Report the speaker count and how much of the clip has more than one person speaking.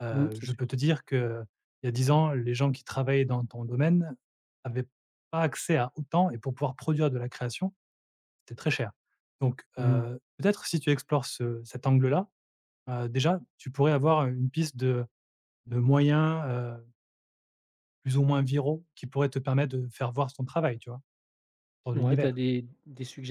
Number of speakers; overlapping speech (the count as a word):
two, about 5%